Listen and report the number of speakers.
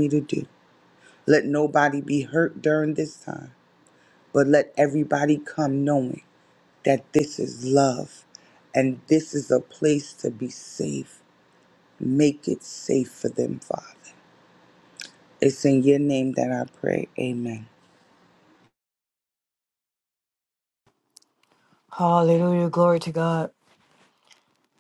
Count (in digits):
2